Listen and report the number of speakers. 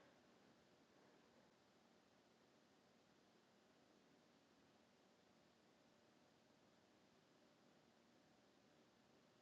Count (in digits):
0